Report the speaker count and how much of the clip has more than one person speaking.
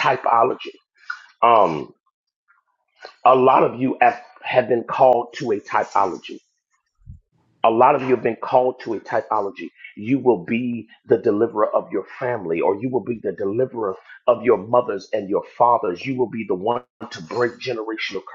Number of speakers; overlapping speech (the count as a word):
one, no overlap